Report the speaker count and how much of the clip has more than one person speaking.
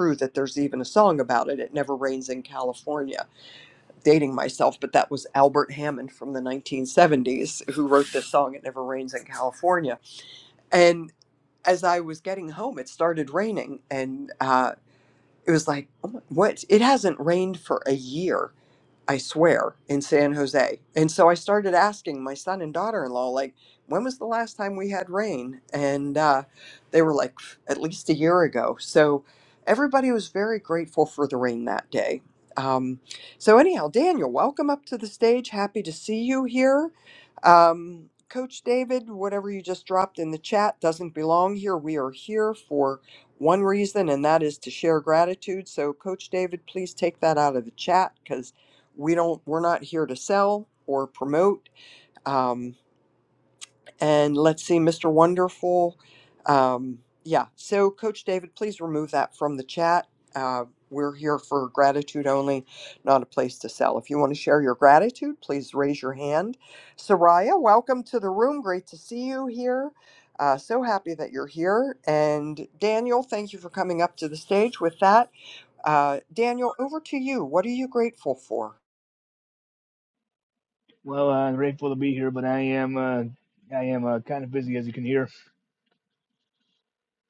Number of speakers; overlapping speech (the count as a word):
two, no overlap